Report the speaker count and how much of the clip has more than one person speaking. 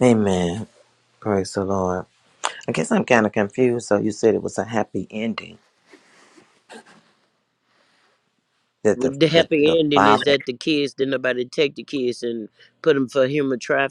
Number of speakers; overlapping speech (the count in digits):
2, about 10%